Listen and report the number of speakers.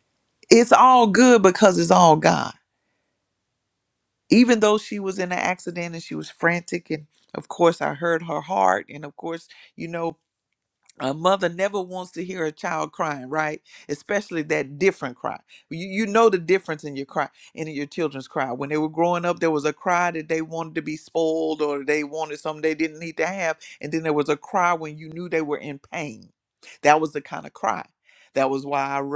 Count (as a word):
one